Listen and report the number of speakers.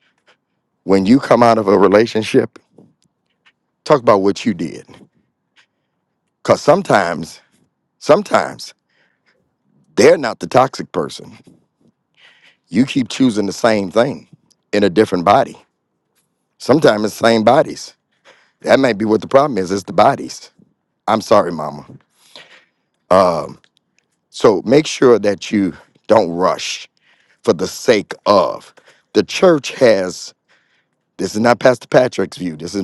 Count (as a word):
one